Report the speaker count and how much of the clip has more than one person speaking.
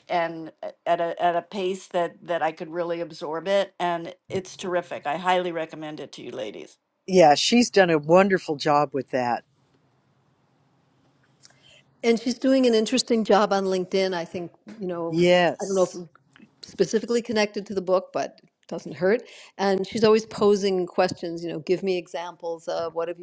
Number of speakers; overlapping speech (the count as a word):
three, about 1%